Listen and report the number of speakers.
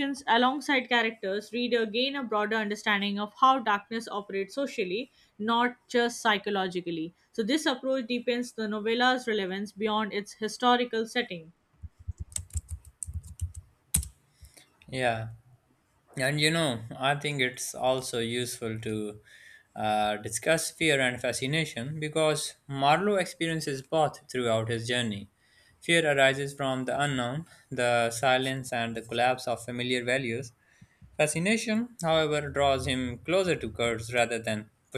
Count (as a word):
two